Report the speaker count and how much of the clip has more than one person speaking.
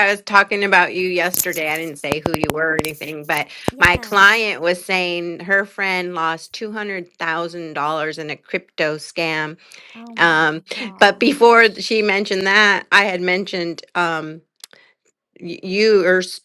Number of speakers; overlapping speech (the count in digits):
2, about 9%